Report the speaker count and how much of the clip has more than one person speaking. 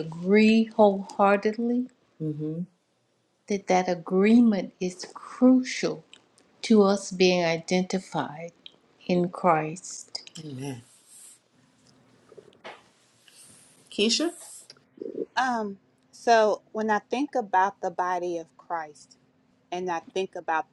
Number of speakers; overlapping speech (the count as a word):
three, no overlap